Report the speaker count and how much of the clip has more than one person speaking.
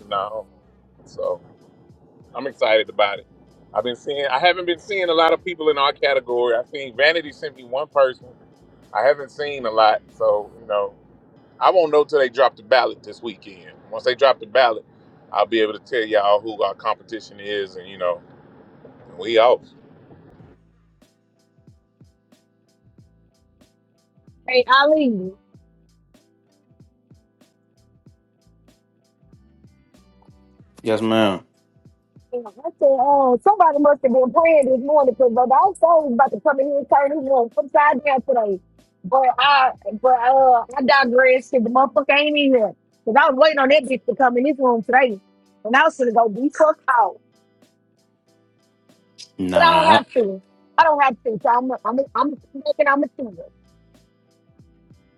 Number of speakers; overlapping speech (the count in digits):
3, about 1%